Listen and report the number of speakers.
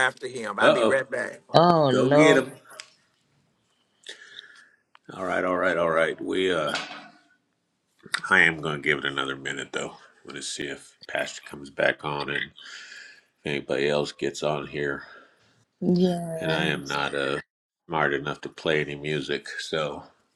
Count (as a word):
three